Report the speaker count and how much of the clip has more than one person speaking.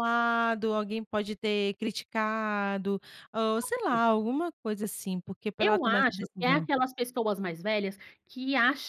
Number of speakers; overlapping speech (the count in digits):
2, about 12%